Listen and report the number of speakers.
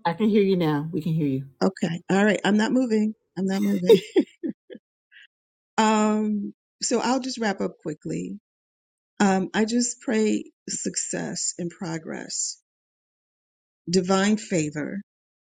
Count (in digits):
2